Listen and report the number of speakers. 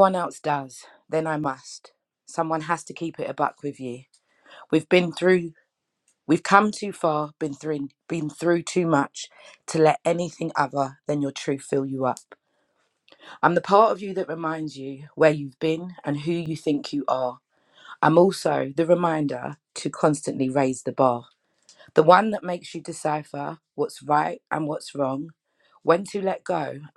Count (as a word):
one